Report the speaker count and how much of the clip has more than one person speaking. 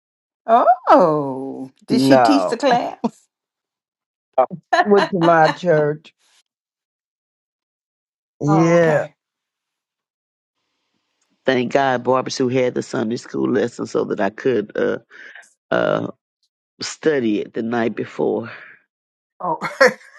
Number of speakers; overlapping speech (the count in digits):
3, about 6%